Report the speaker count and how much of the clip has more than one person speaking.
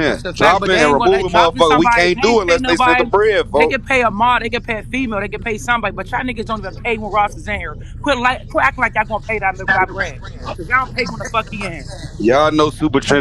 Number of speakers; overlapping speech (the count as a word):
two, about 24%